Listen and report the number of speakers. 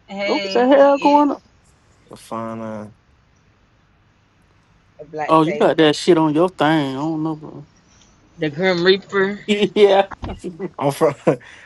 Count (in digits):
3